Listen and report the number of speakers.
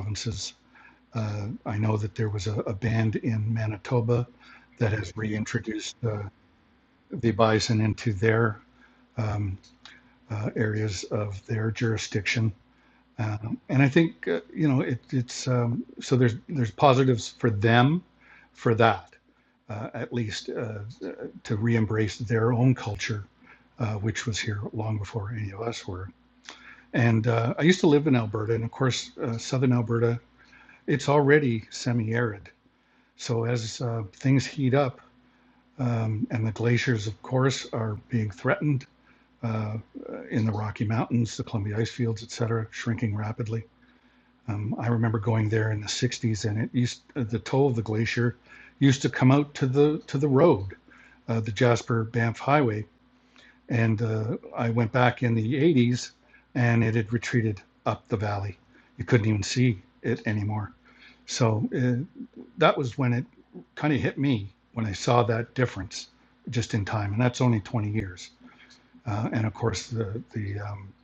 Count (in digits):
1